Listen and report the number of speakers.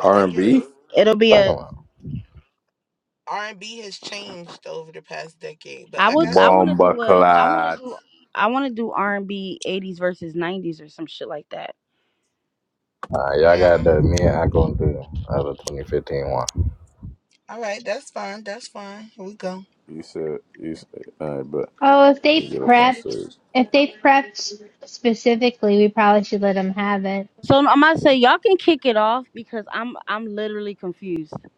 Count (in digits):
5